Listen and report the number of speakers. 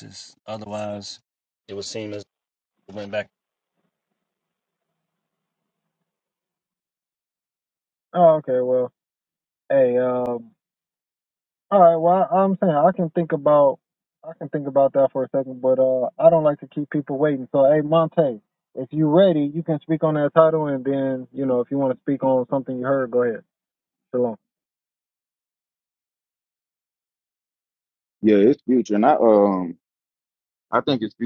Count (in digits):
3